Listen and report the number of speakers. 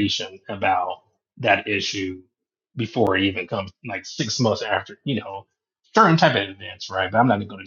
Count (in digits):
1